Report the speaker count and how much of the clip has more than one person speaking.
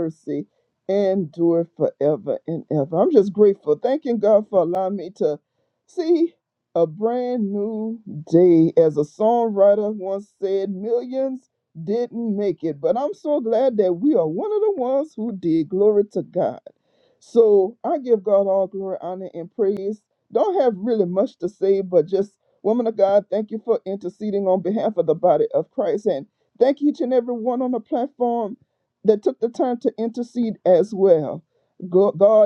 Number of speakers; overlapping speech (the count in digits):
1, no overlap